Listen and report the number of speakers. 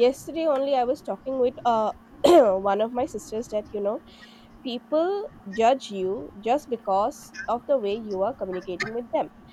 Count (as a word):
one